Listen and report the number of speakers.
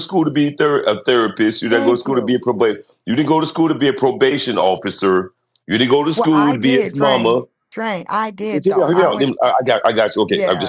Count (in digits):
2